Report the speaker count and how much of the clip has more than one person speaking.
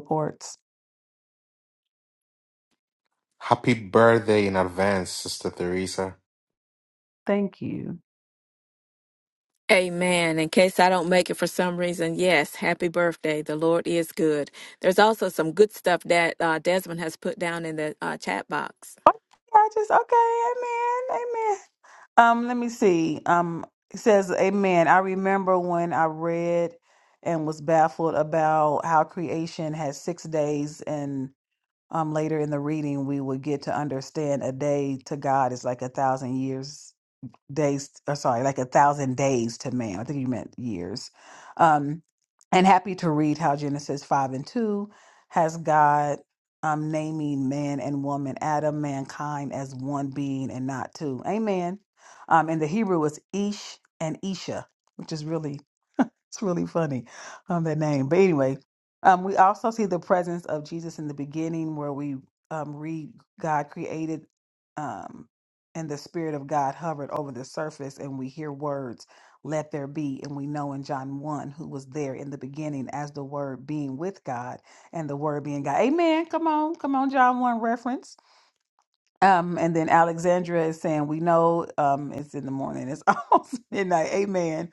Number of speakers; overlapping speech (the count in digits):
3, no overlap